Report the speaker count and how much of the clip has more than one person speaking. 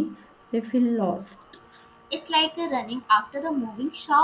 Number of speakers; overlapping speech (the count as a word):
two, no overlap